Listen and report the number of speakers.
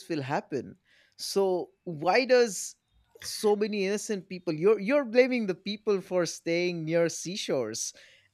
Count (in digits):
1